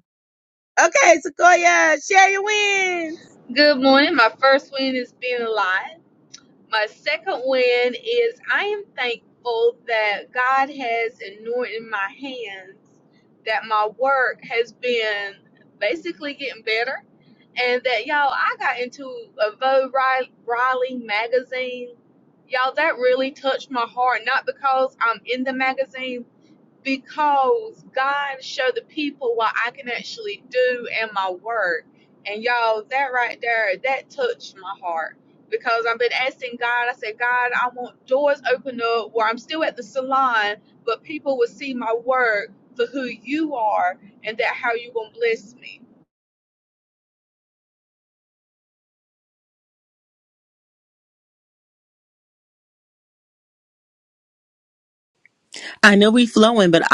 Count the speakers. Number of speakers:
three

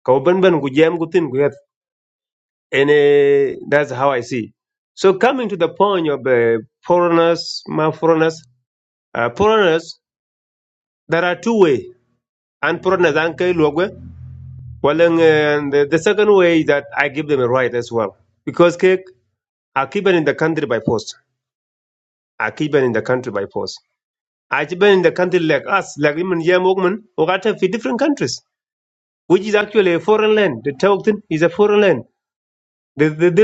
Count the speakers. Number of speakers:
one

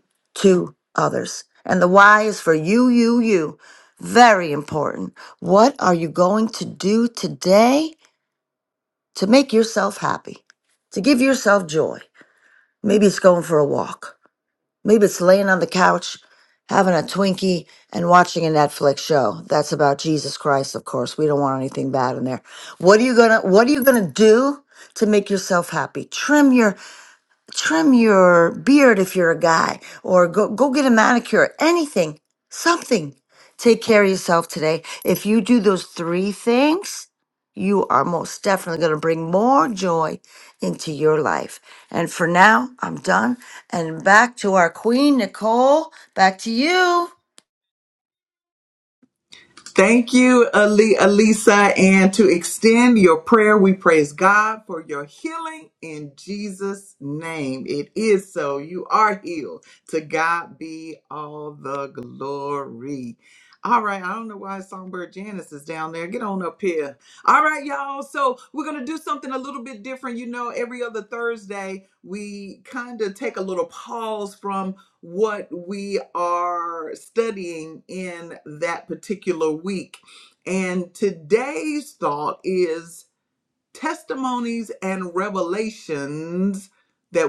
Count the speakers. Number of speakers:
two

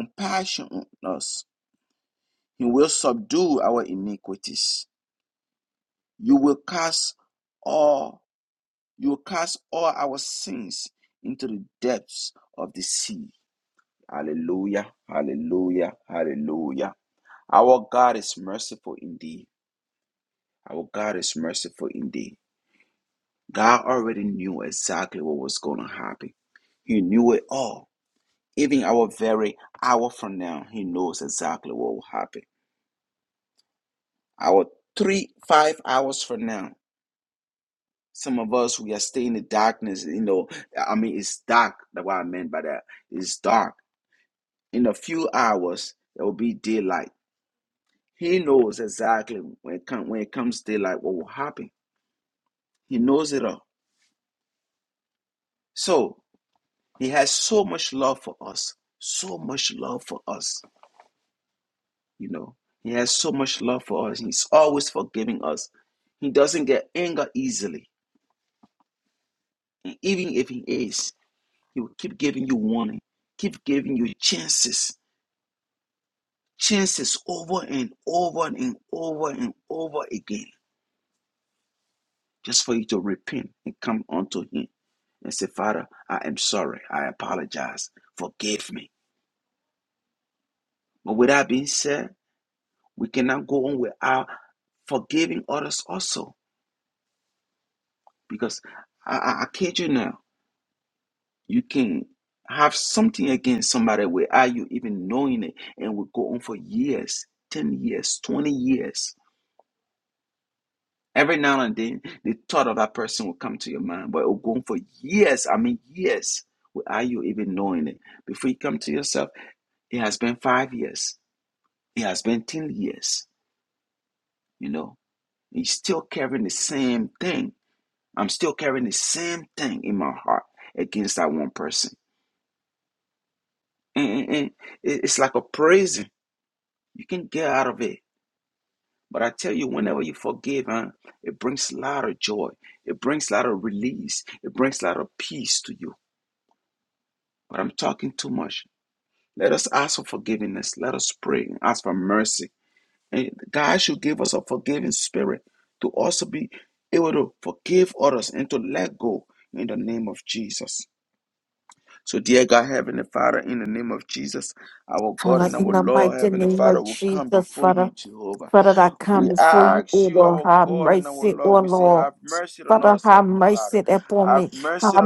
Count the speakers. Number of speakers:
two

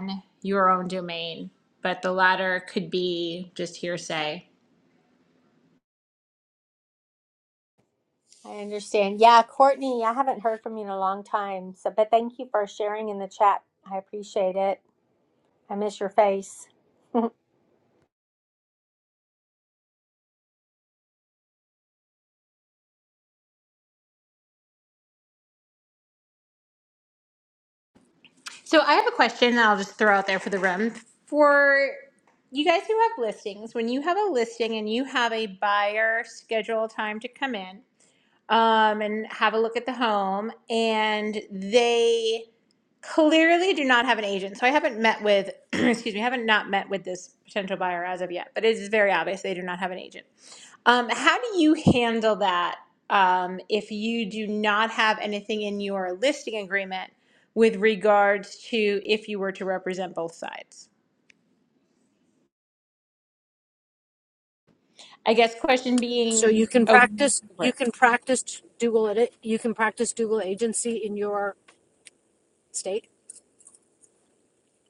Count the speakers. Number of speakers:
three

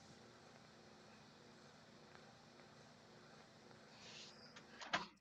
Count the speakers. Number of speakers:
zero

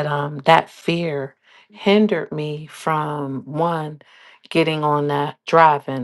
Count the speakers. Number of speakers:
one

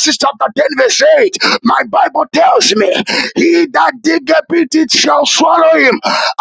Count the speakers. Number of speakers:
one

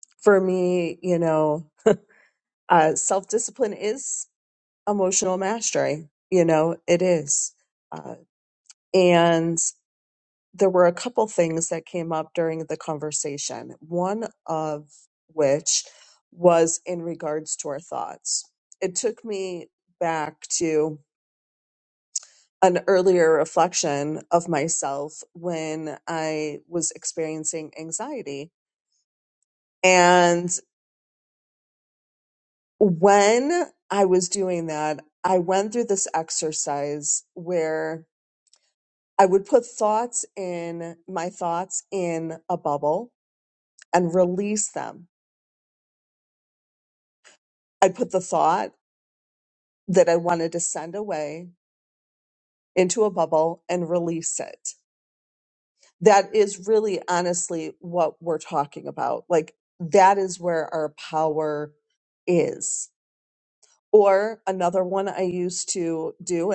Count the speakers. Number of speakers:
one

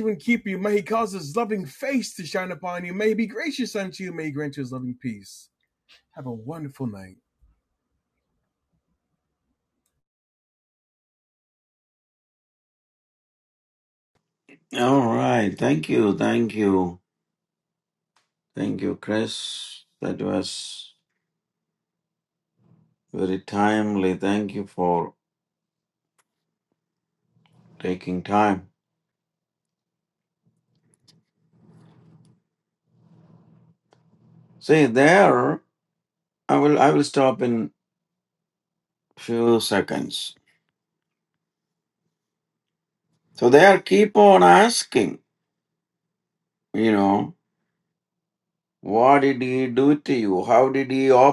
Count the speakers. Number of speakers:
two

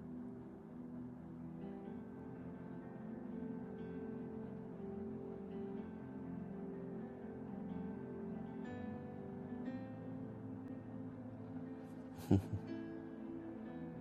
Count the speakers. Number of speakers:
zero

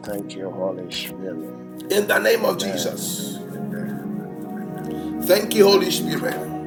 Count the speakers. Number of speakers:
two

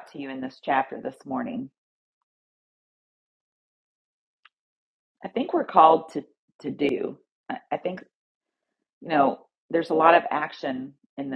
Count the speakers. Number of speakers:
one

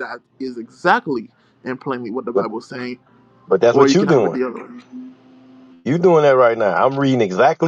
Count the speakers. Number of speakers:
two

